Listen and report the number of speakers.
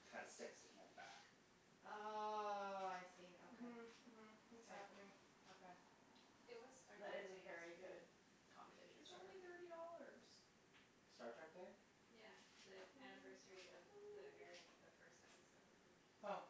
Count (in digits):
4